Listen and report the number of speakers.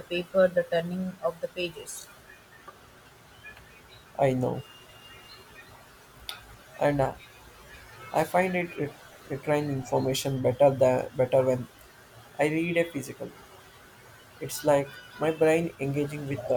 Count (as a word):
two